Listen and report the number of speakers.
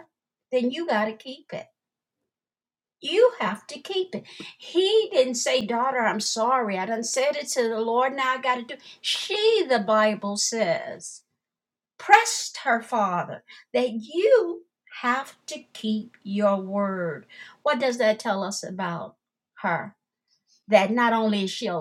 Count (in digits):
1